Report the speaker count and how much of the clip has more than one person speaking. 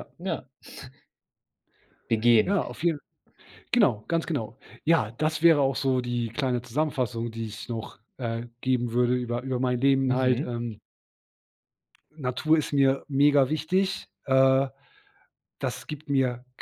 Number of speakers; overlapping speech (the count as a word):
two, about 3%